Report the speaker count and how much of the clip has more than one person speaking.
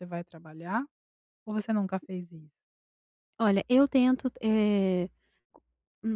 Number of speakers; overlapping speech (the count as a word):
two, no overlap